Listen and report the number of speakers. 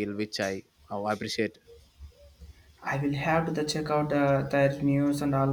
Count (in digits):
2